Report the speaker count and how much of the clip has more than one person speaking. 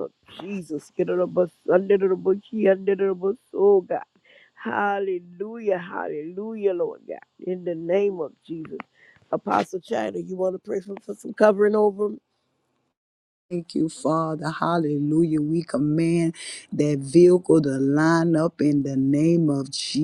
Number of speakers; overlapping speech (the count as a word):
two, no overlap